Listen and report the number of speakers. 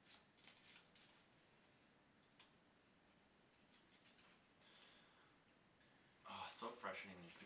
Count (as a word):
one